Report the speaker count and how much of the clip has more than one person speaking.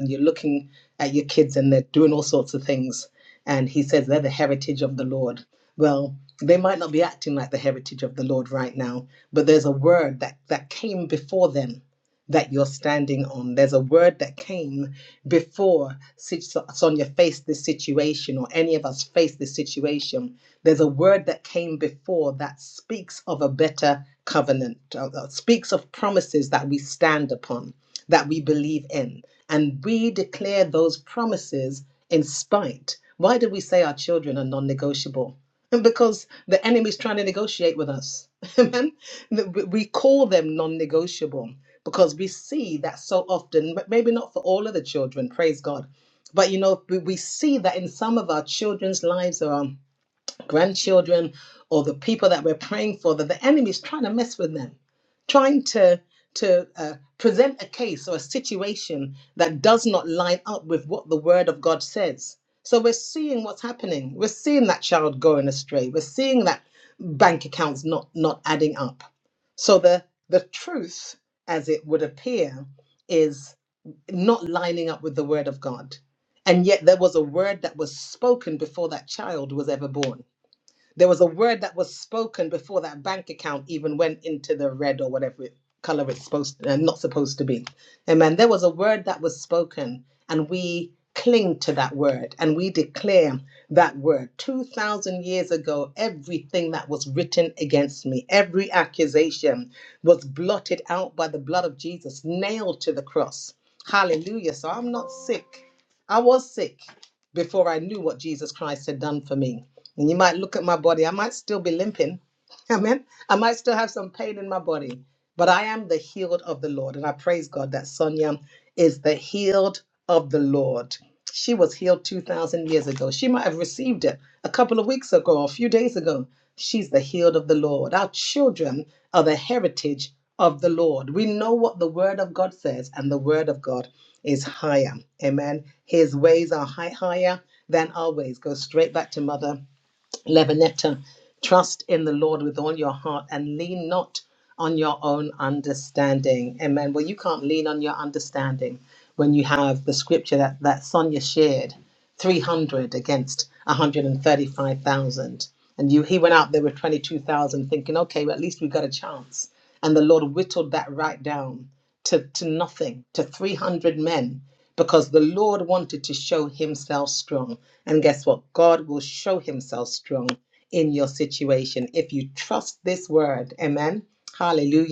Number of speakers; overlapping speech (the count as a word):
one, no overlap